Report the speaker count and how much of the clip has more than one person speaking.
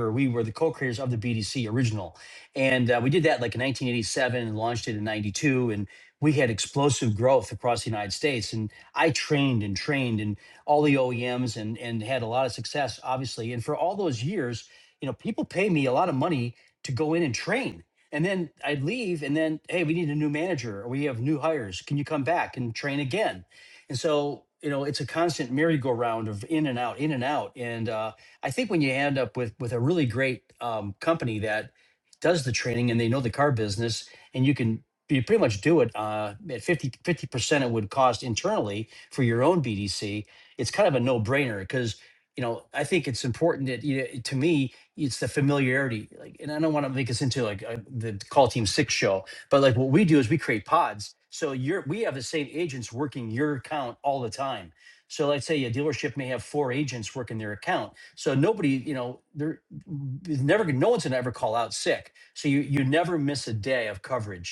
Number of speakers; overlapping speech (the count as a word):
one, no overlap